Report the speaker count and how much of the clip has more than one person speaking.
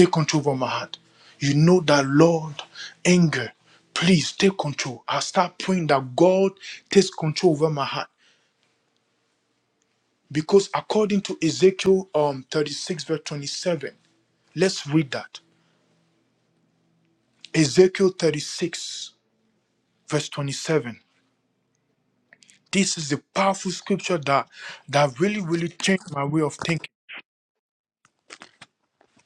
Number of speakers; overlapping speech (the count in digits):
1, no overlap